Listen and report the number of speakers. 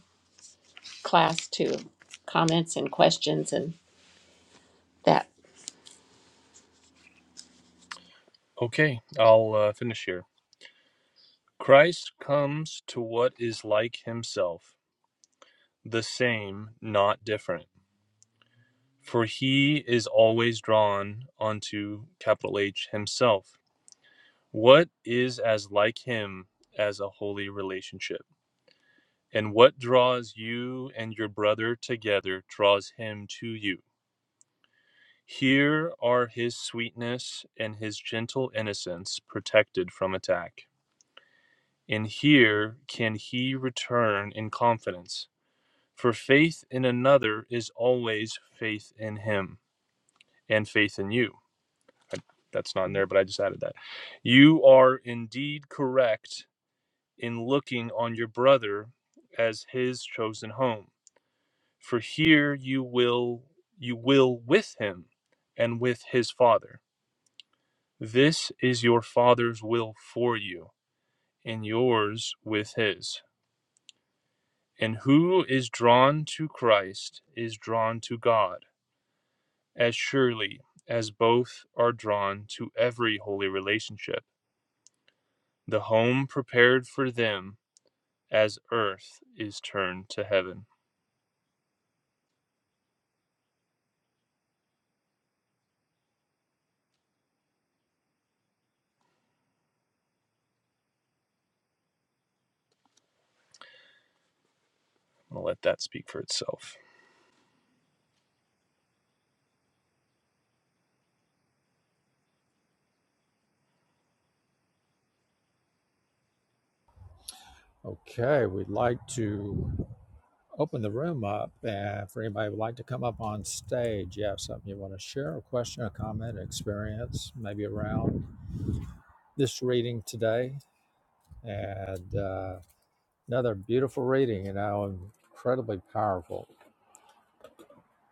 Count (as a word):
three